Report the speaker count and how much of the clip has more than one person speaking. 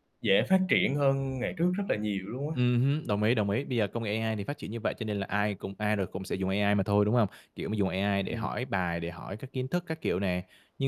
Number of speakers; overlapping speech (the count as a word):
two, about 2%